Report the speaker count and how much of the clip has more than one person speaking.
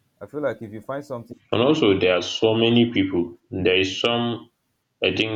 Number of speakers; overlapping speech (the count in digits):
2, no overlap